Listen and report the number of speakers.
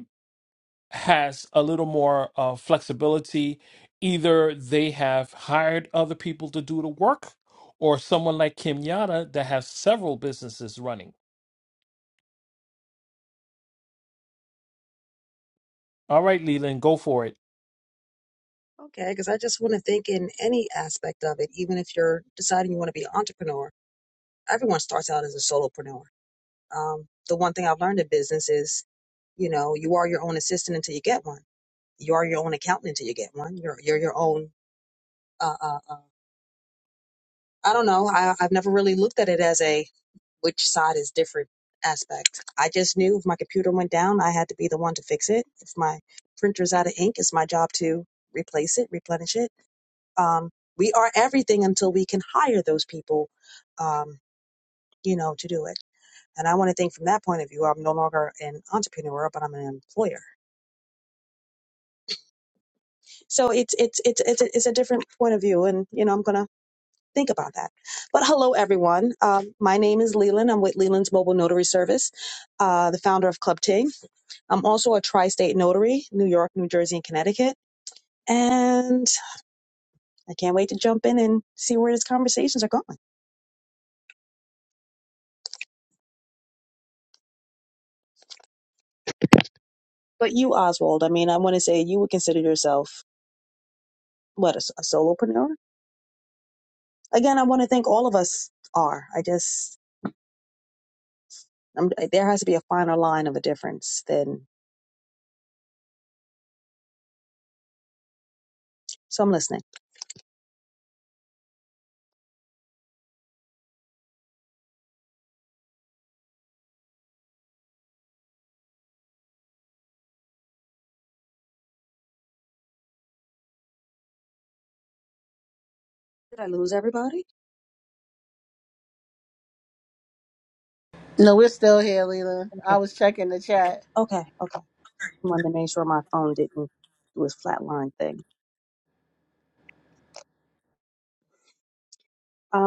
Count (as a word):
three